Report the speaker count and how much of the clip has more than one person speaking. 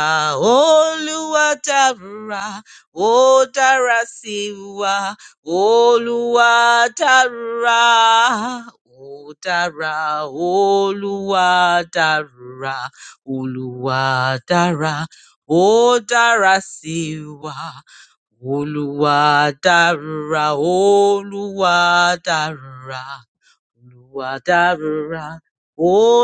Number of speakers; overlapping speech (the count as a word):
one, no overlap